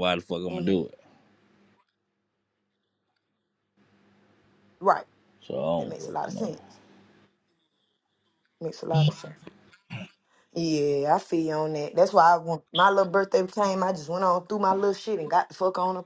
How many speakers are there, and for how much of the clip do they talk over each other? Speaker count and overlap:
2, about 6%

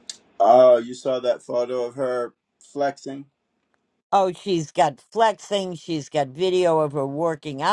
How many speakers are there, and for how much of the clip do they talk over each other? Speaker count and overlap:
2, no overlap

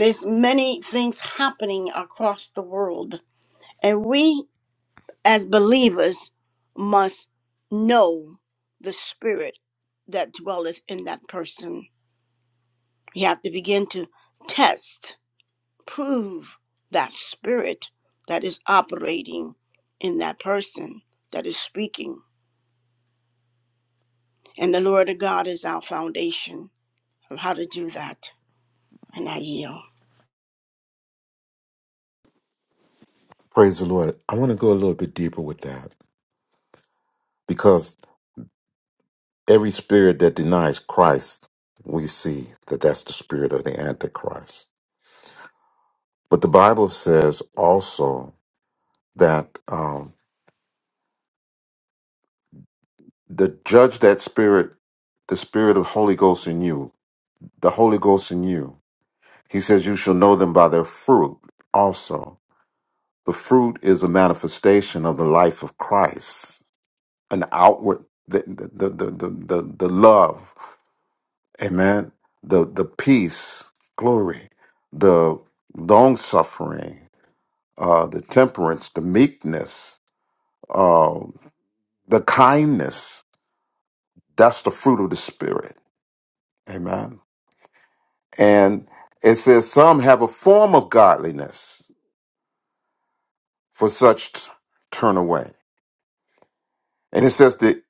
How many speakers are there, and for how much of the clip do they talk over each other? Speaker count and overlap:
2, no overlap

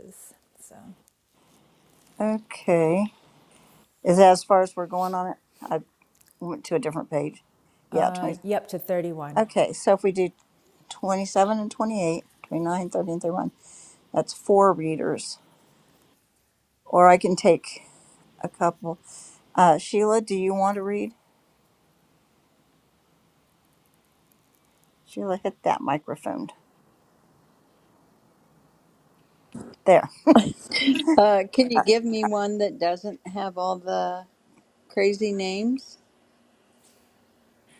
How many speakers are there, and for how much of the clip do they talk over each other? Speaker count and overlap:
3, about 1%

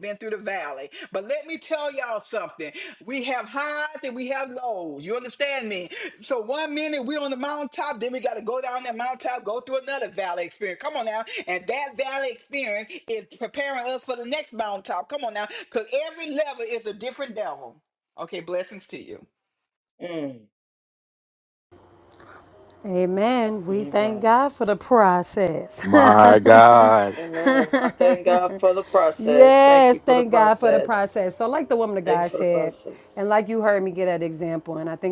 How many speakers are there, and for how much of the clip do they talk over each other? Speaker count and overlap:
4, about 8%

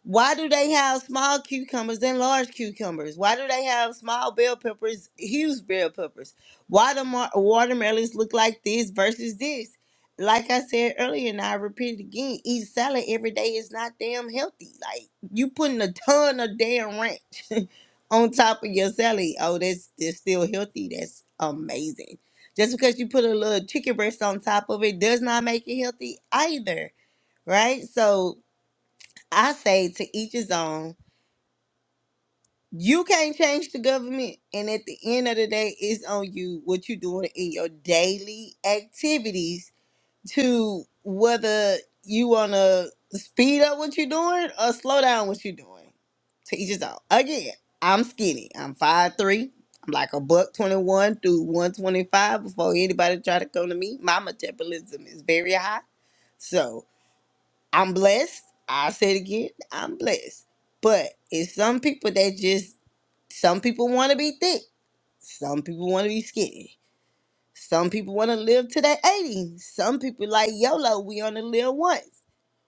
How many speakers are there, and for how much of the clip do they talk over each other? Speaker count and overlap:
1, no overlap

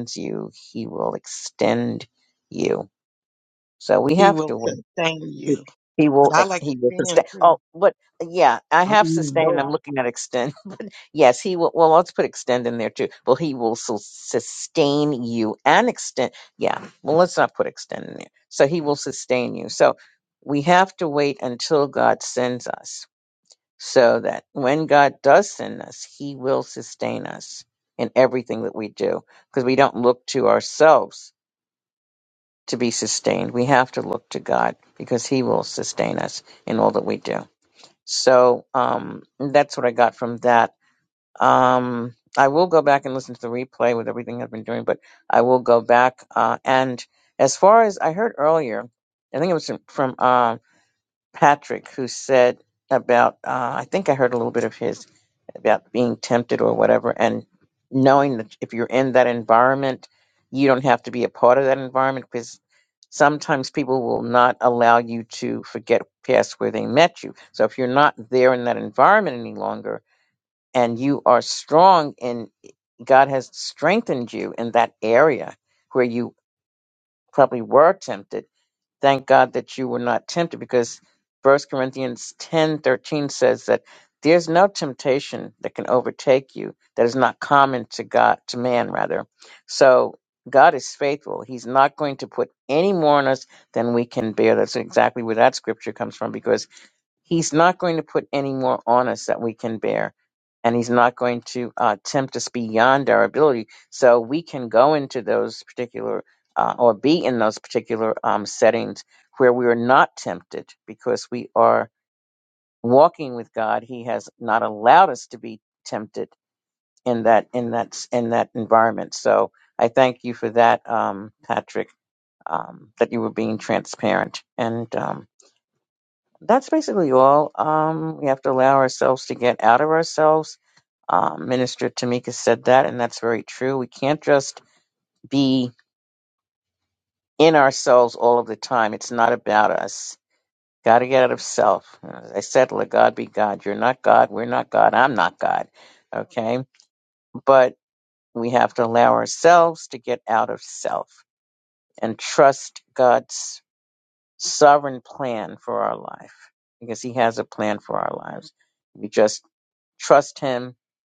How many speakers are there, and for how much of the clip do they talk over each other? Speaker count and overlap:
2, about 2%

